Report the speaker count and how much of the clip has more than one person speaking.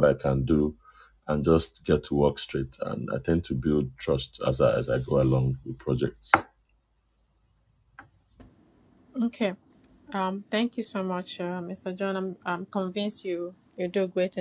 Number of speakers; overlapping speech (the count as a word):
two, no overlap